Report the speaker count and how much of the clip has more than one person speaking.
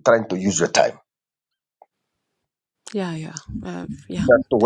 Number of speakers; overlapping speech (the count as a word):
two, about 10%